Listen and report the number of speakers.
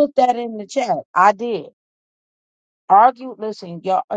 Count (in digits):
1